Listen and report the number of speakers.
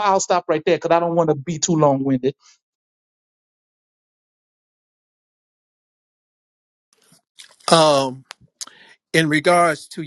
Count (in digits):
2